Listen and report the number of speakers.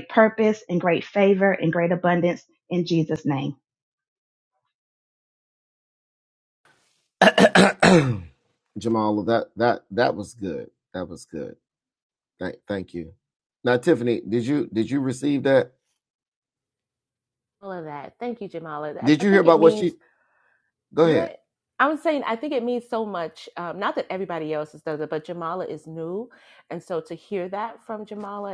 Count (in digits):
3